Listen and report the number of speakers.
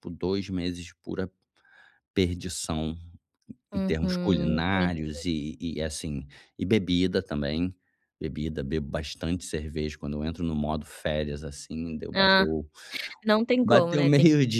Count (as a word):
two